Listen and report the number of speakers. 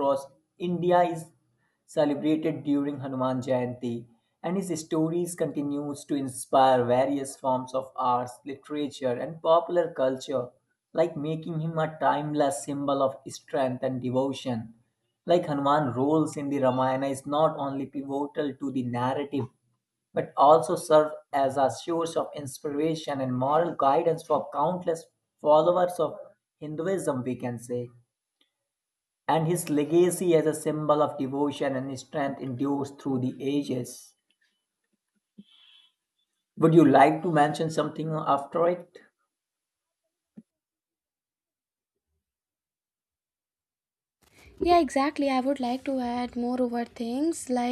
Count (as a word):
two